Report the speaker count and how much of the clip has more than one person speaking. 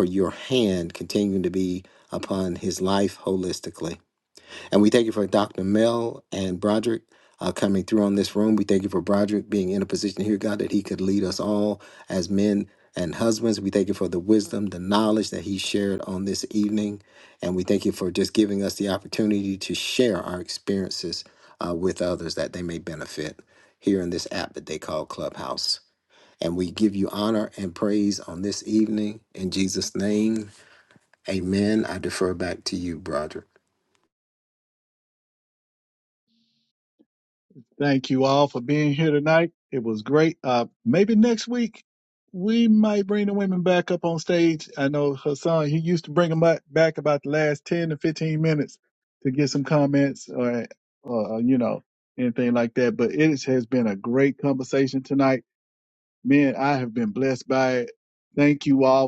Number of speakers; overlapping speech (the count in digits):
2, no overlap